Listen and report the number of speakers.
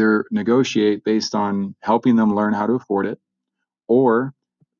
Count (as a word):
one